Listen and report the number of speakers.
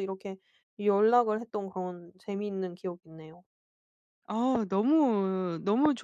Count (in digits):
2